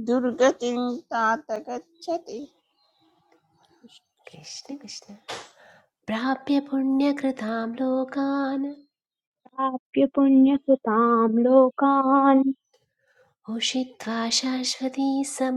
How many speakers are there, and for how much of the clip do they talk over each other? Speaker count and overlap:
3, no overlap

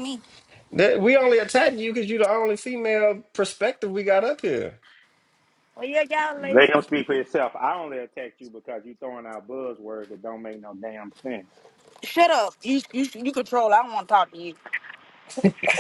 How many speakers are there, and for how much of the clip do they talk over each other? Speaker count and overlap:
3, about 2%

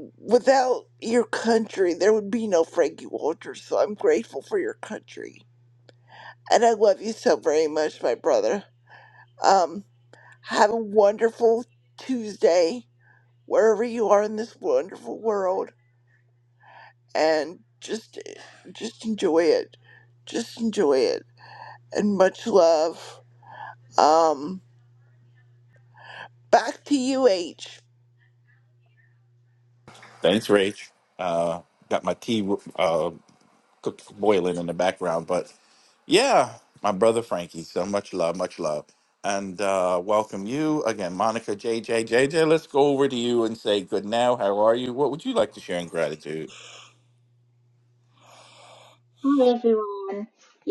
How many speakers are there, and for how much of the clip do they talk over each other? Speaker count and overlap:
3, no overlap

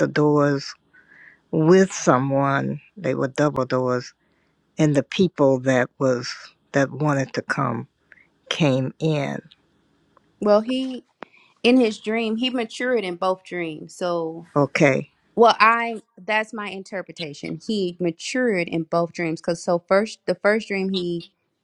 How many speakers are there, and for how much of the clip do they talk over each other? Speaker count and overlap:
2, no overlap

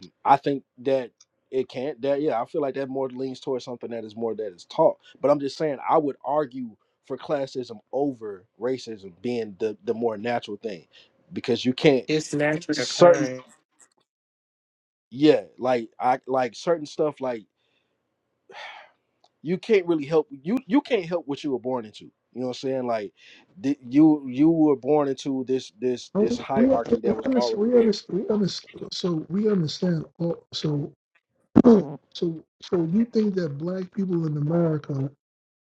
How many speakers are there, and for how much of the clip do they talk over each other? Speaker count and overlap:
3, about 5%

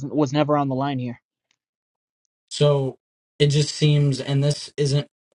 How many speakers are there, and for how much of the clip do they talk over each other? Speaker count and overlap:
2, no overlap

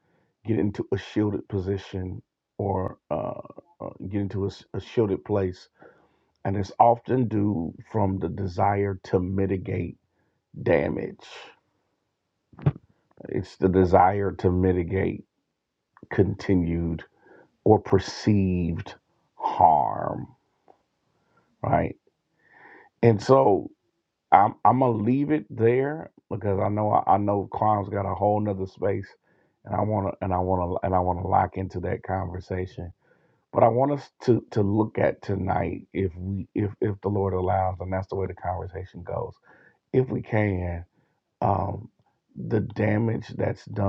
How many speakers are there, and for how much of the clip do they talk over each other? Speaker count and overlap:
1, no overlap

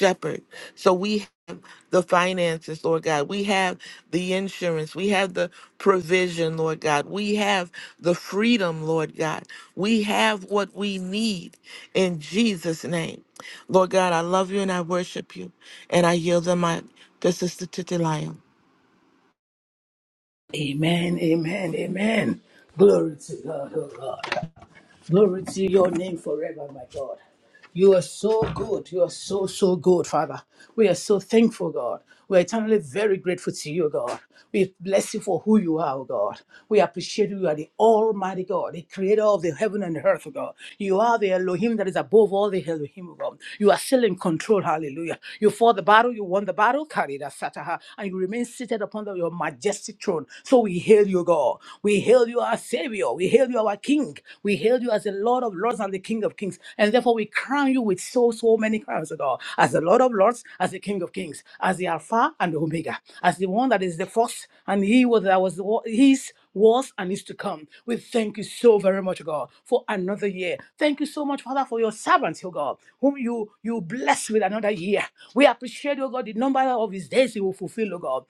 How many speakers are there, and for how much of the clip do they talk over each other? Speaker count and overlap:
2, no overlap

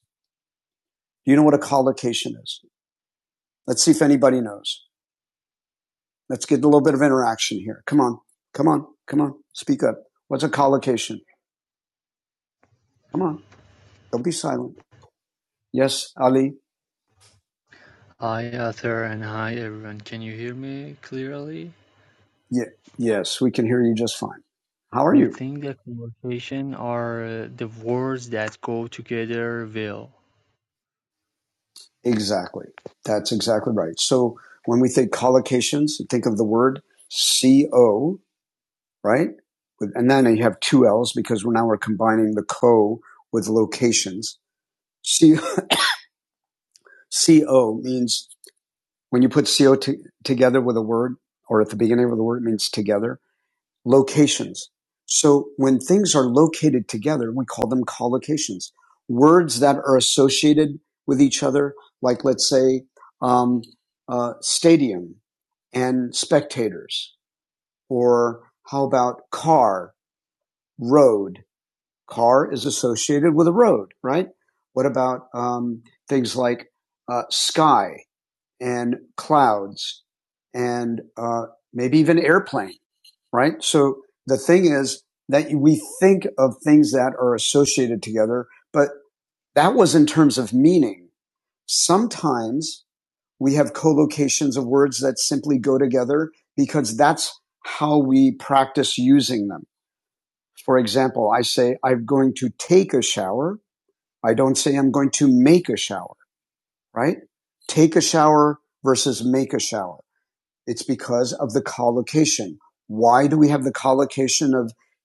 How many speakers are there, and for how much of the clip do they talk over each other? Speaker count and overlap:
2, under 1%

